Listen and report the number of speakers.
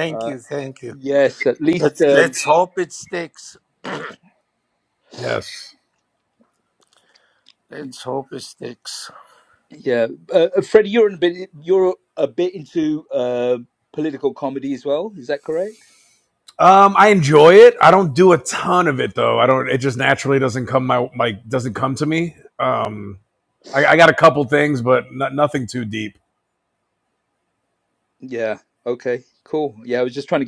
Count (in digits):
3